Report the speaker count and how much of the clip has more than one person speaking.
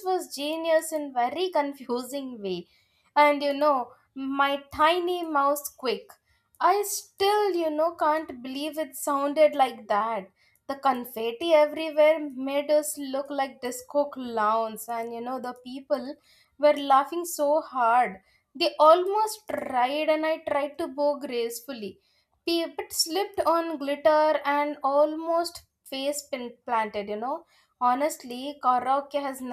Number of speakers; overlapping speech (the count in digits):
1, no overlap